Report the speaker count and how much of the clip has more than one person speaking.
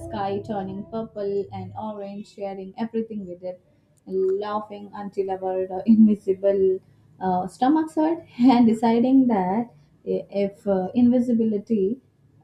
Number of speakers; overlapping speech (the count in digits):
1, no overlap